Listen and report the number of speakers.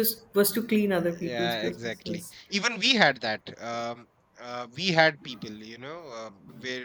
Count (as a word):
two